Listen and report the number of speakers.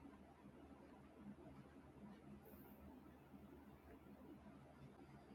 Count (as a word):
zero